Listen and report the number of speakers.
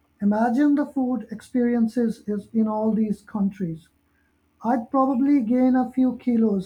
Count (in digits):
1